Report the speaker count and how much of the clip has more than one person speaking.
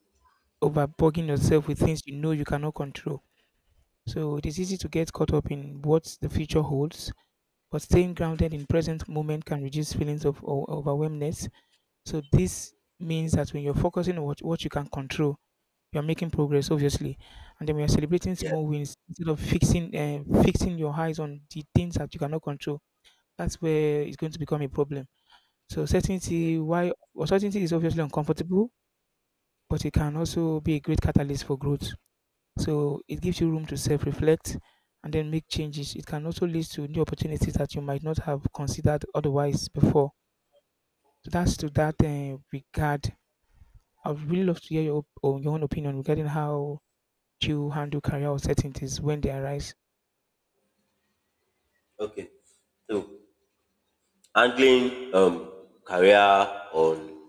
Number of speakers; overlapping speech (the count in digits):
2, about 1%